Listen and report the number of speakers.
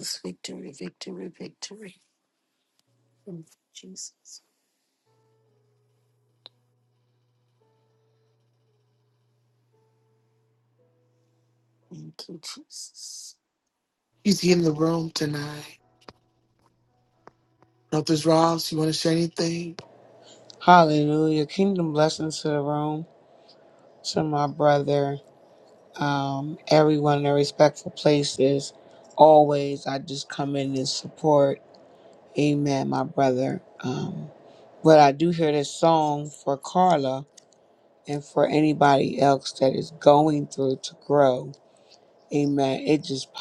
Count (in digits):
3